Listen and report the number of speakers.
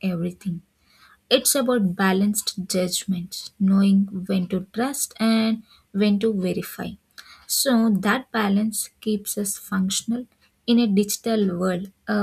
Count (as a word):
one